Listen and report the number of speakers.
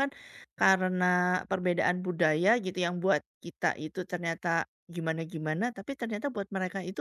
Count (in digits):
1